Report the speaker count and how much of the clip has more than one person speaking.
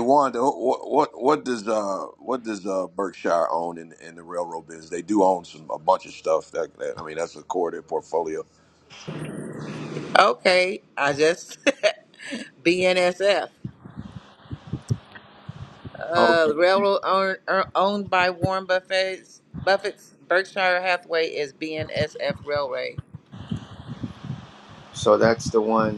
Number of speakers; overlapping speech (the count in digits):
3, about 2%